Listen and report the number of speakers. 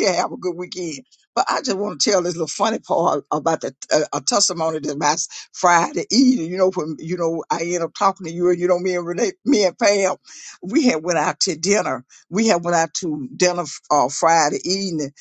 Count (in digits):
1